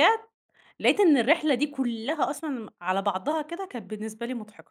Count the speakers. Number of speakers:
1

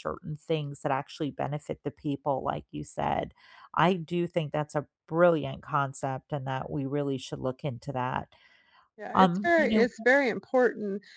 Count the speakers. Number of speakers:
2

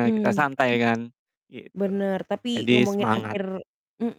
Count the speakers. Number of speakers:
2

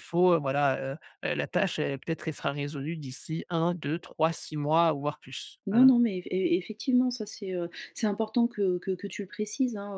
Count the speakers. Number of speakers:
2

